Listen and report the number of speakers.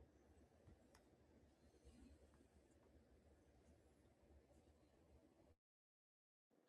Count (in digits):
0